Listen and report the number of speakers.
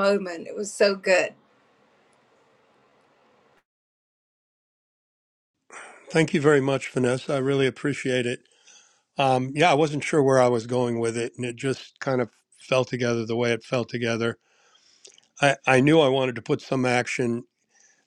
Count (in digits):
2